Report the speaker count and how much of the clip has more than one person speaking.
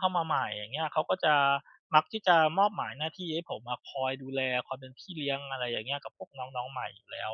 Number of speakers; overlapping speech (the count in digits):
1, no overlap